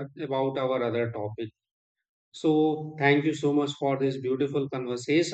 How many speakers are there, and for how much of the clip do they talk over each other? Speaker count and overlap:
1, no overlap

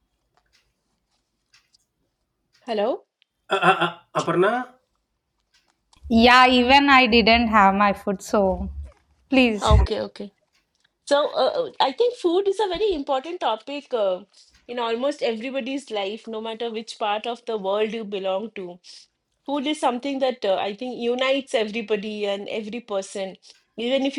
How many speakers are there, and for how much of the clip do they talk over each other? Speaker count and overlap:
3, about 1%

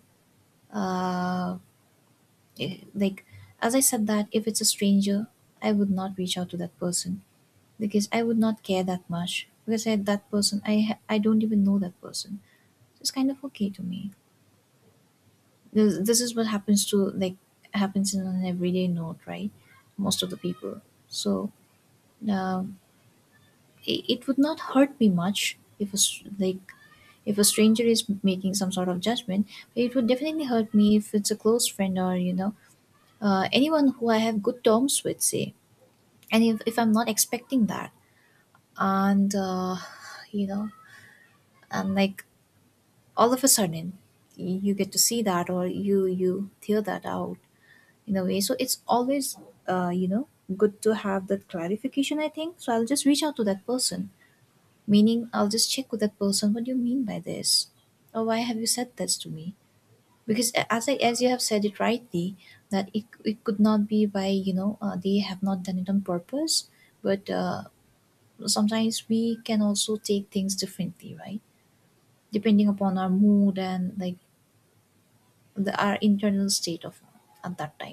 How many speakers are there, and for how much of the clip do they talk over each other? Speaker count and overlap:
1, no overlap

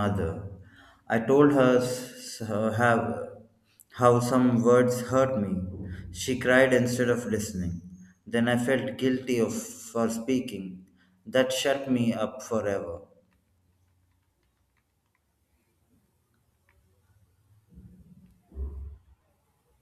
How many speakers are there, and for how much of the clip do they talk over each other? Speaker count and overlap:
1, no overlap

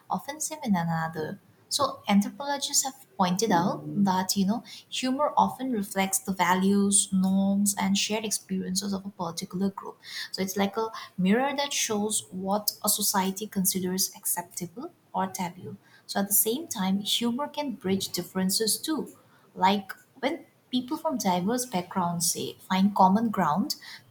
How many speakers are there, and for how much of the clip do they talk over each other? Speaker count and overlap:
1, no overlap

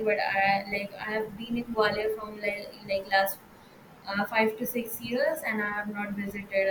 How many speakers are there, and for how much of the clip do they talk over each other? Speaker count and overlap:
1, no overlap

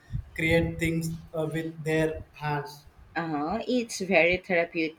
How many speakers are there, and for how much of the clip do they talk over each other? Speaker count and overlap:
2, no overlap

